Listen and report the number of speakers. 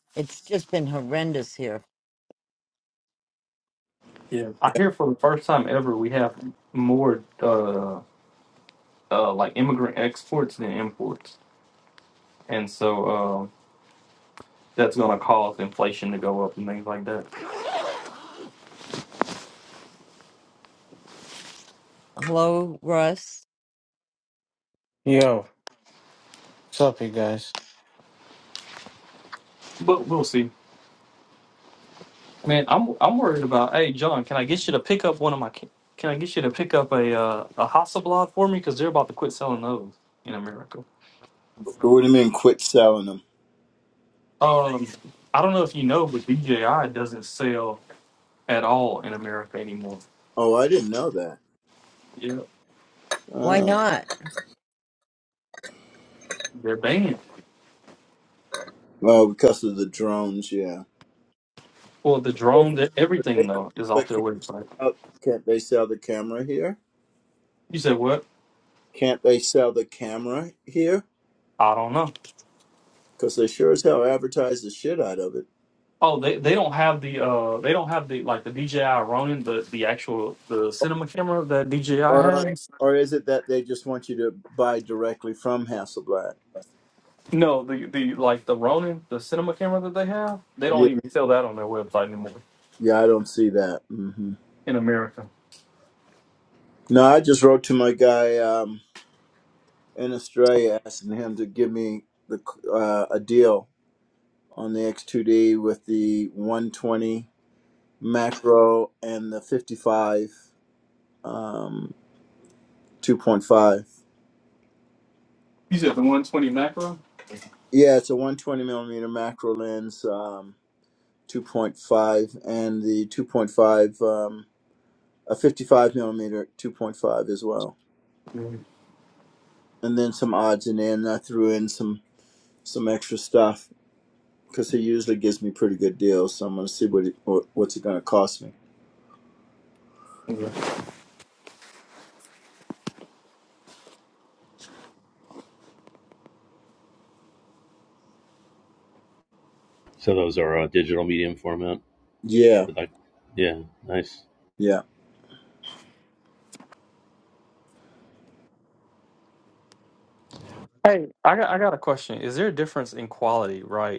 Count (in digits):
5